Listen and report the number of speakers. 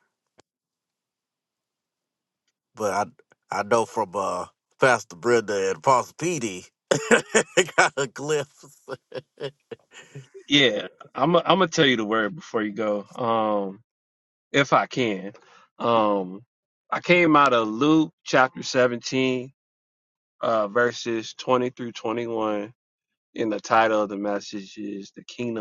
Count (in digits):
2